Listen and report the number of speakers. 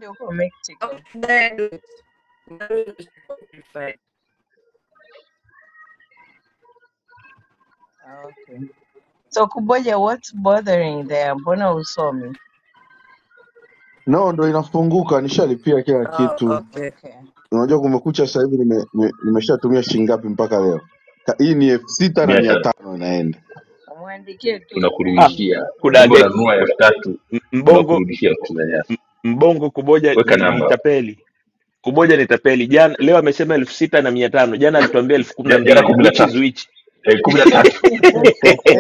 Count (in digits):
5